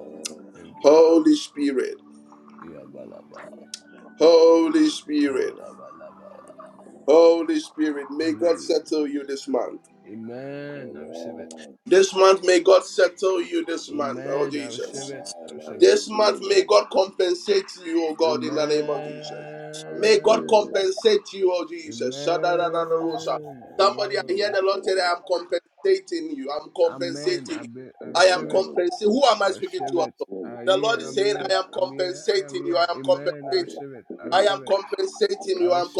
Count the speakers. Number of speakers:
3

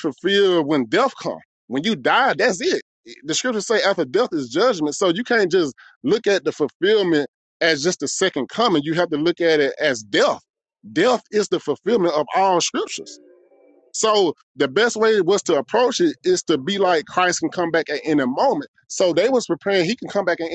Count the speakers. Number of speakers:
1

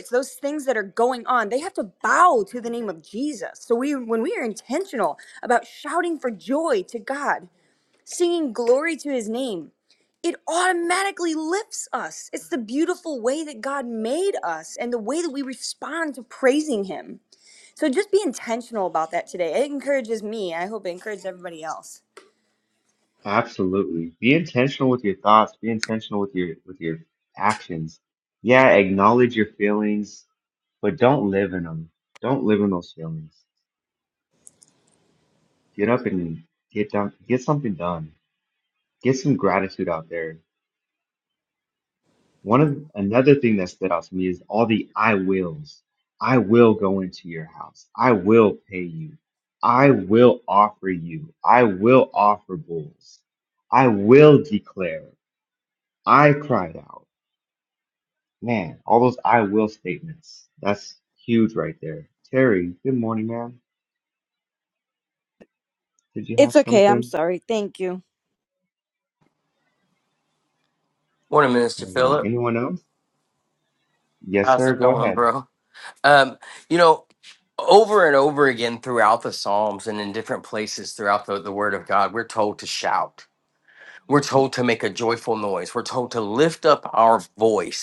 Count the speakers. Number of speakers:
4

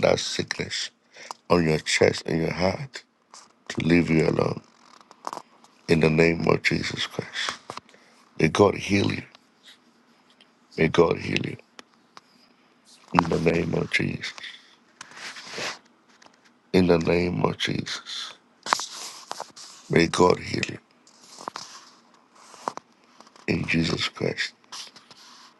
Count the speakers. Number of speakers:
1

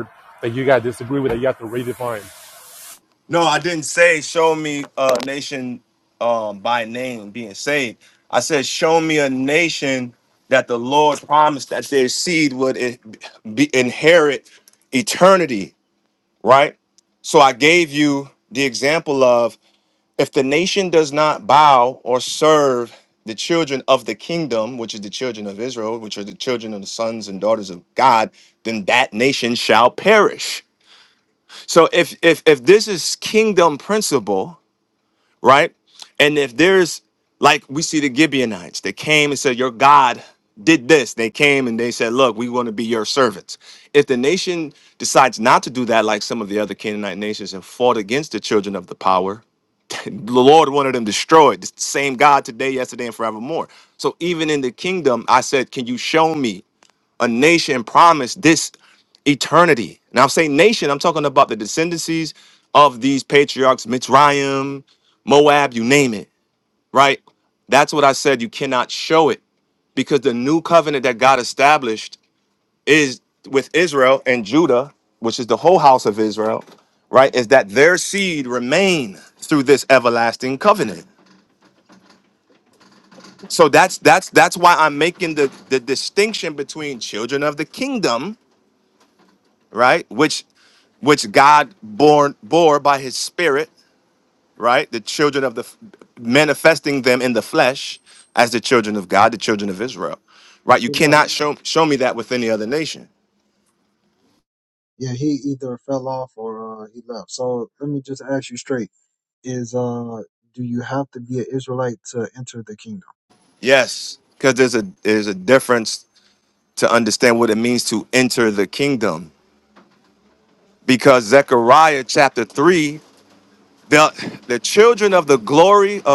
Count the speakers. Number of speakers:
3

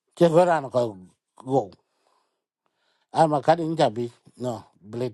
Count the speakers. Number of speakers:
1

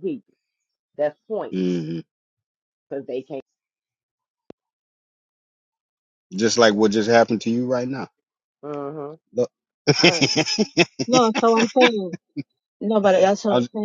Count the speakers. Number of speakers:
3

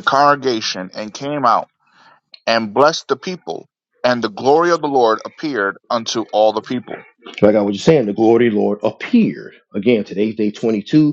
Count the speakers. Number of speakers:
2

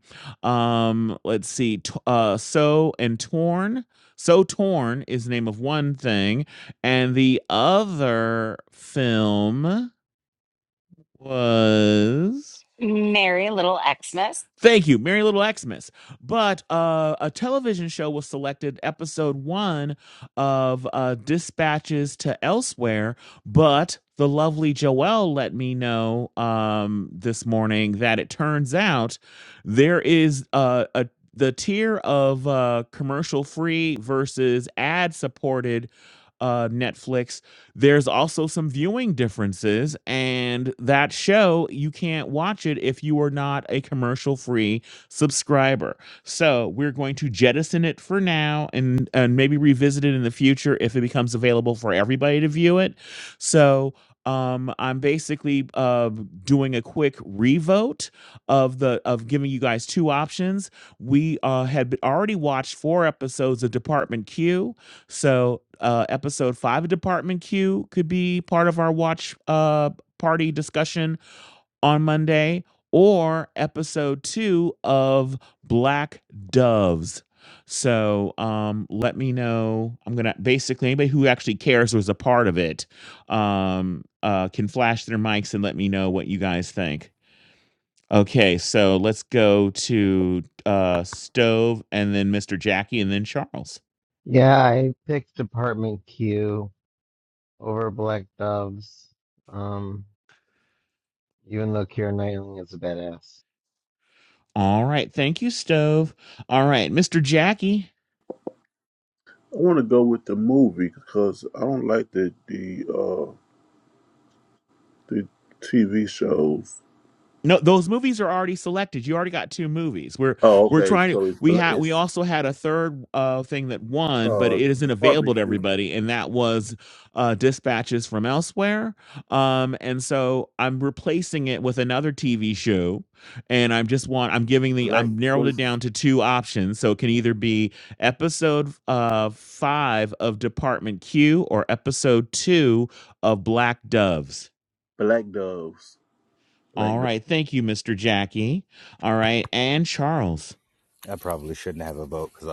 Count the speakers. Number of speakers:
5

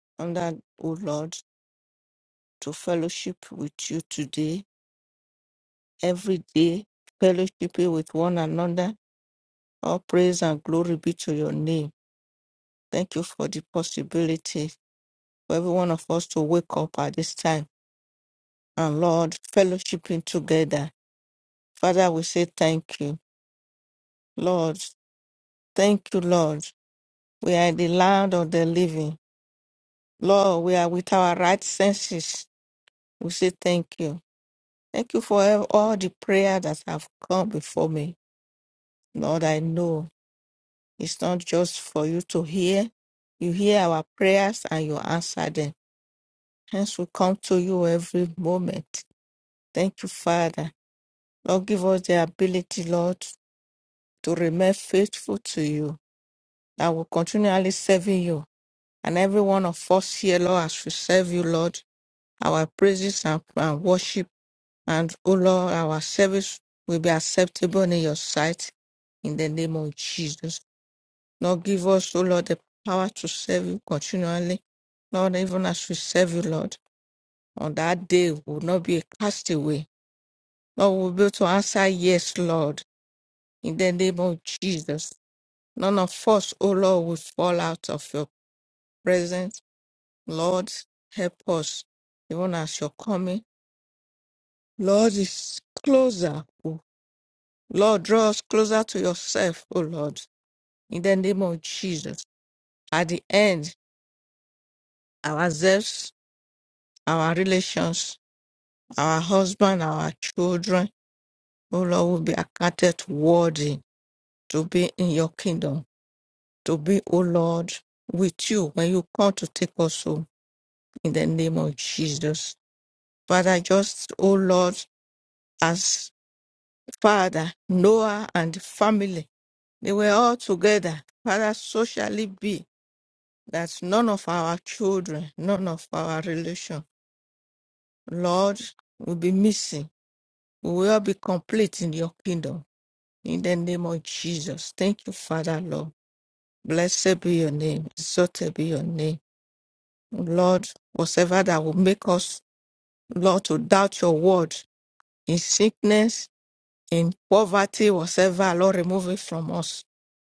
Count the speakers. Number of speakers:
1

